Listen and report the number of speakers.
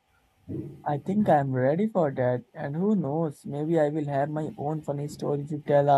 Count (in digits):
1